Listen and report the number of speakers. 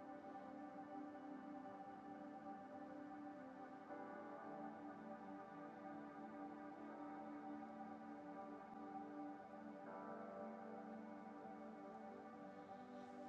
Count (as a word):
zero